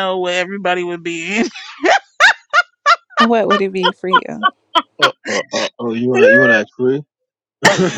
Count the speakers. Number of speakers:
3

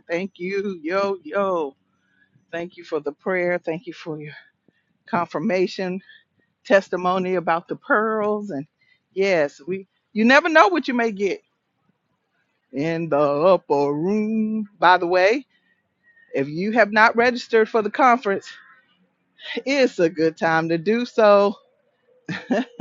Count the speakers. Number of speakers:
1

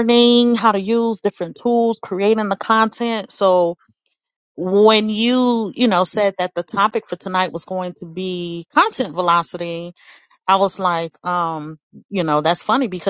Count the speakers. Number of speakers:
1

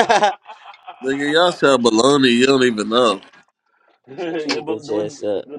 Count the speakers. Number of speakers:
3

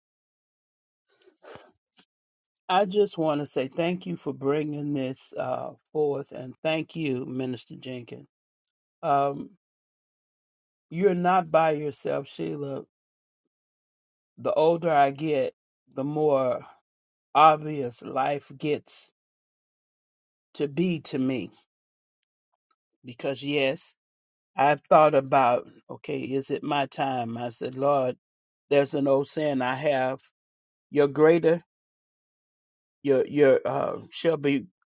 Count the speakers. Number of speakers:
1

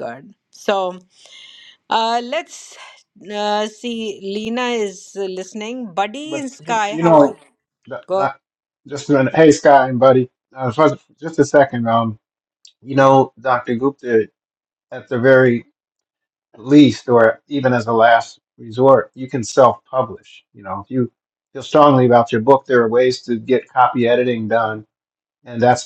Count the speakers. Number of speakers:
2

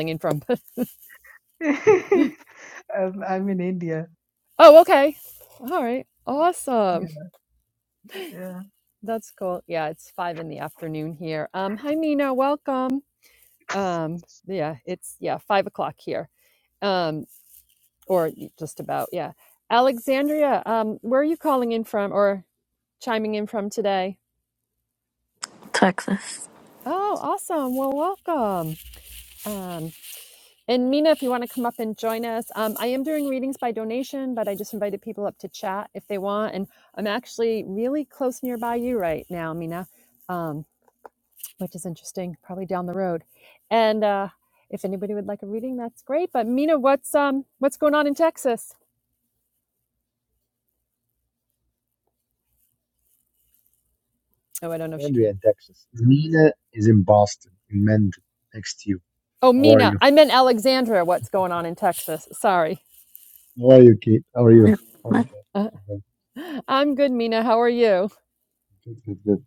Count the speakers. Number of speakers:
4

